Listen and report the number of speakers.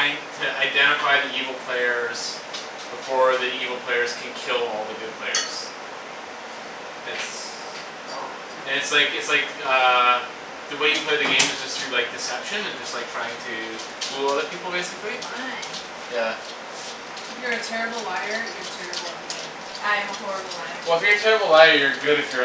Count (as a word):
three